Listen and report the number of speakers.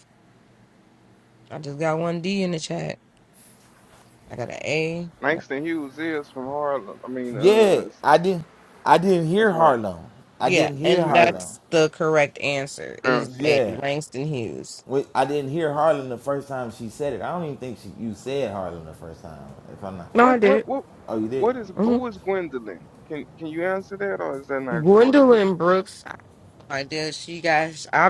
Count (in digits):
3